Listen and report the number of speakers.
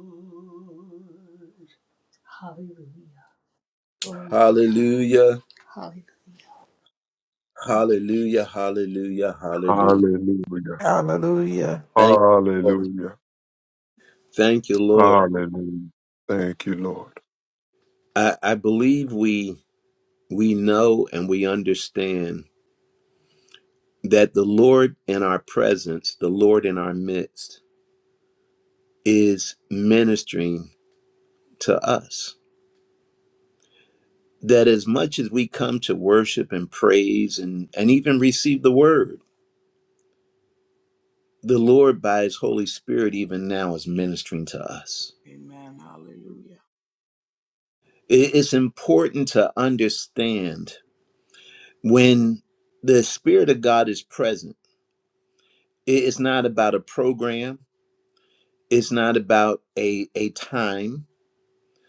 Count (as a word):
five